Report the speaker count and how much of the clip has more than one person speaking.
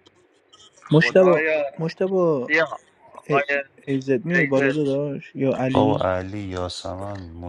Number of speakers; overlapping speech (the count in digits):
3, about 17%